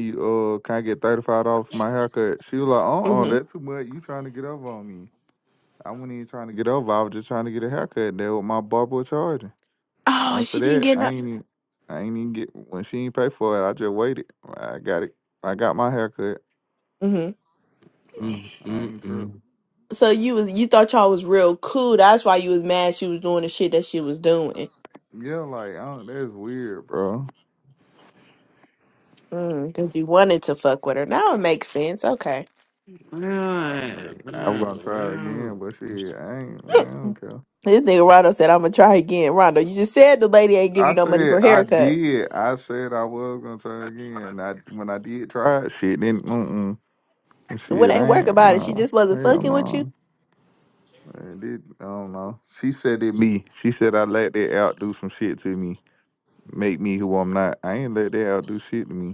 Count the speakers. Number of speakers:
3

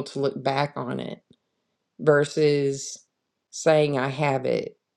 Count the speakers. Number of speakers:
1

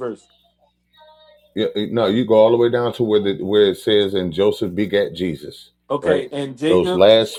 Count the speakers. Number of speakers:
2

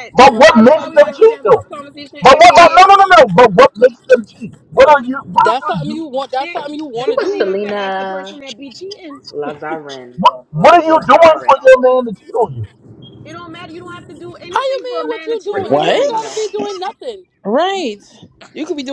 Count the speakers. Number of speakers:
5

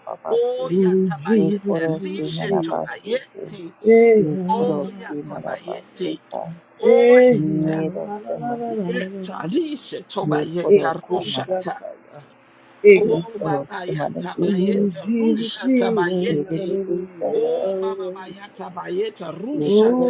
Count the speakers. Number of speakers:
3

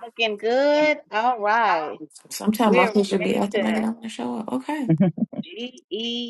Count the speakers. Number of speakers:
2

